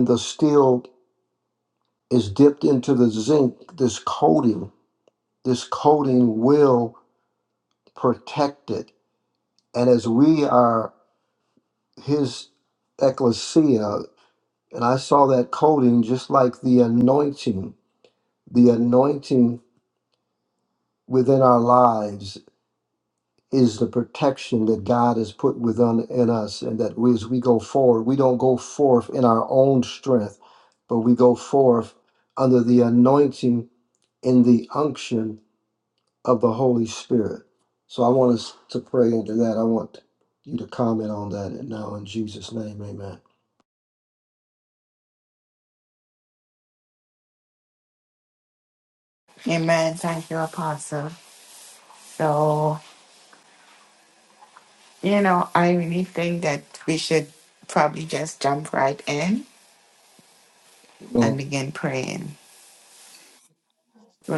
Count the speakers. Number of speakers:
2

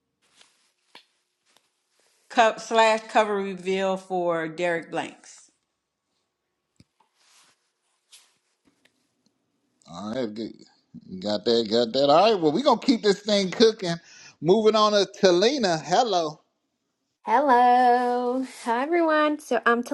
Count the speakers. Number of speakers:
3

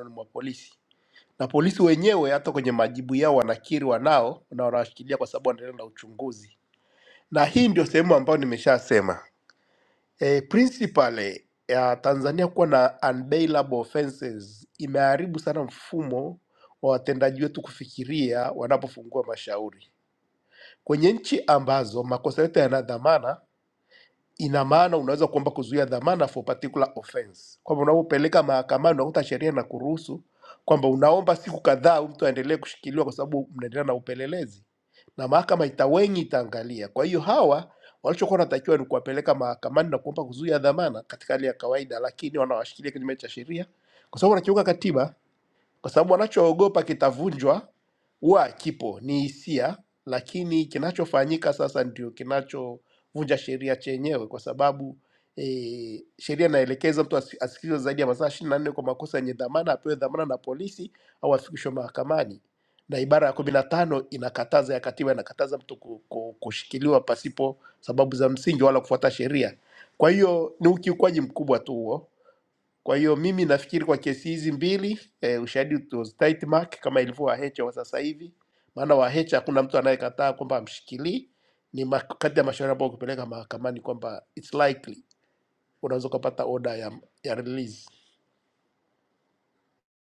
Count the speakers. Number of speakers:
1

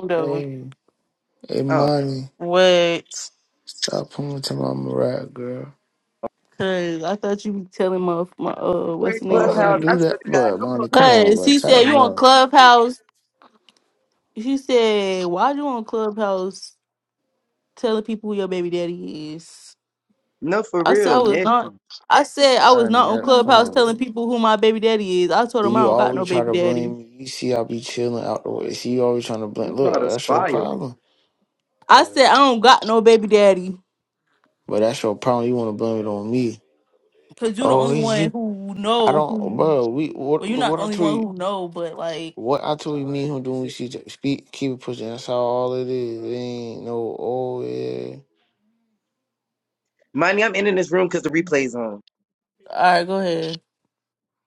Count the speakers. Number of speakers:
3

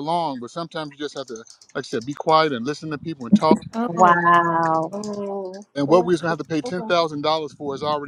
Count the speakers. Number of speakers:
3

